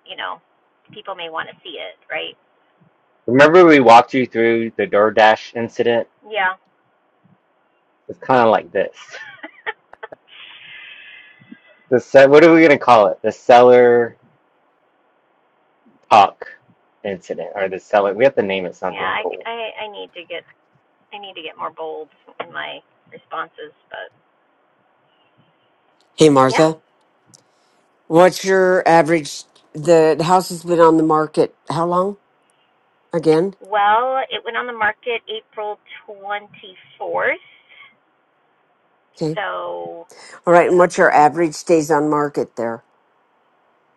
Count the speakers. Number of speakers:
three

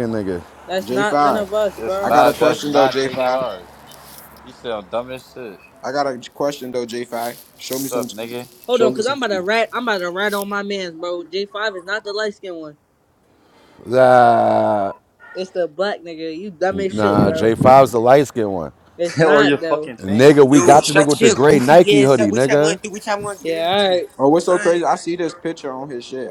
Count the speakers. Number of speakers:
five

